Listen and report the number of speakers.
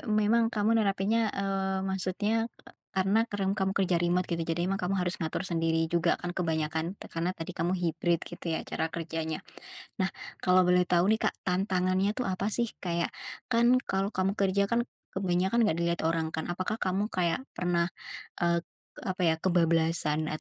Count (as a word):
one